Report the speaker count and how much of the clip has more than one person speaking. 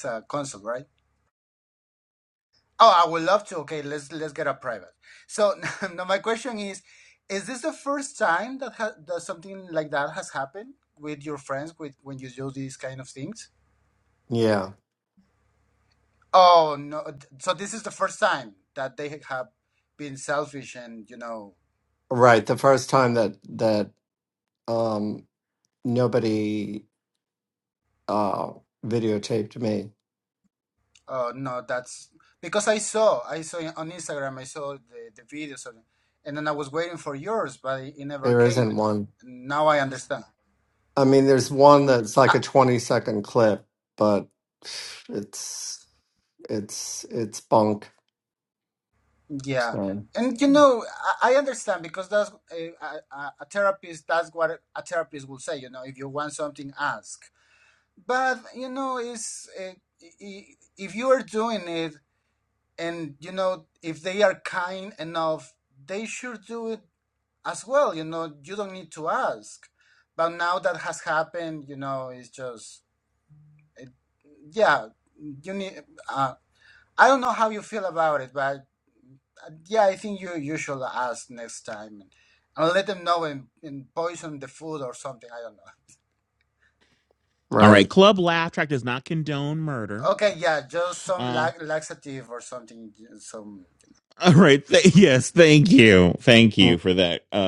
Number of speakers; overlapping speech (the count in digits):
3, about 2%